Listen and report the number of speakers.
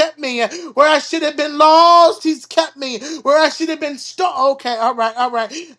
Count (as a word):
one